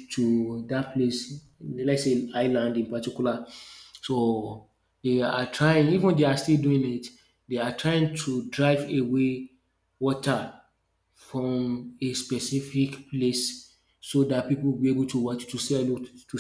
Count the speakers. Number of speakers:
1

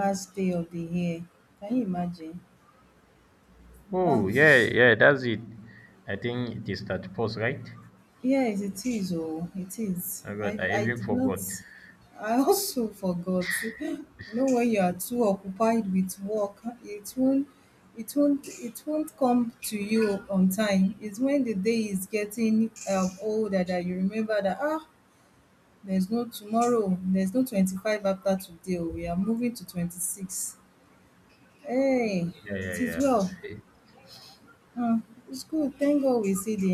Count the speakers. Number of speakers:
2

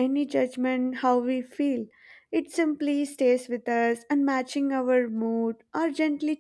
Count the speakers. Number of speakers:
1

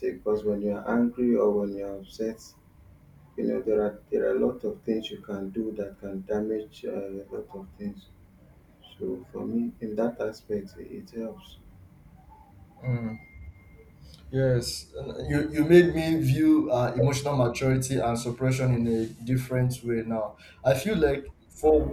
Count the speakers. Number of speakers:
2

